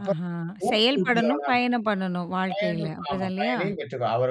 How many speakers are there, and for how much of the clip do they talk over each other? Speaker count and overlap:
two, about 49%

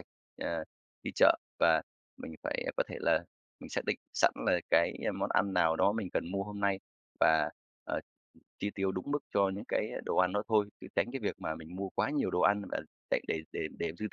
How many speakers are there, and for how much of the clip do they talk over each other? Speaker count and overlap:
one, no overlap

